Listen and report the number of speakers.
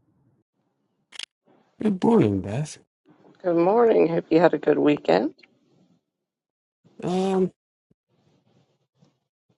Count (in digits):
2